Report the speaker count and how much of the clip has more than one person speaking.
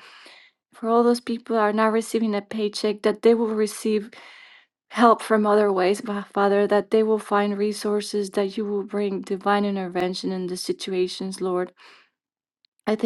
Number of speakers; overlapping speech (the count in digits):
1, no overlap